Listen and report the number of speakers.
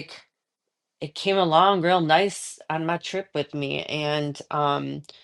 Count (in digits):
1